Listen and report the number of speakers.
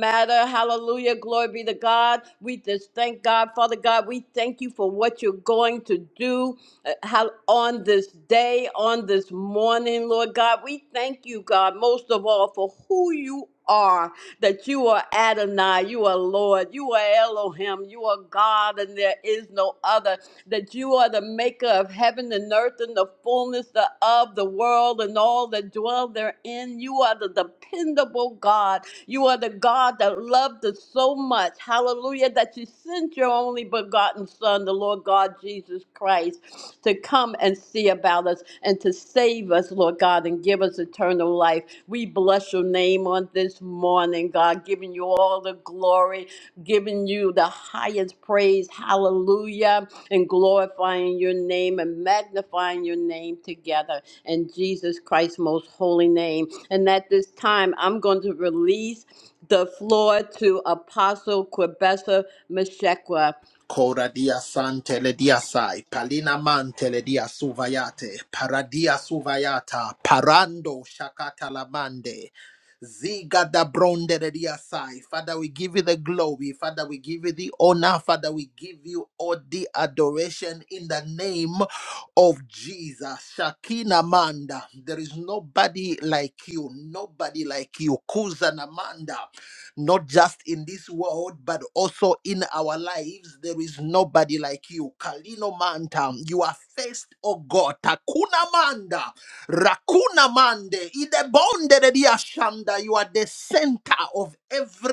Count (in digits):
2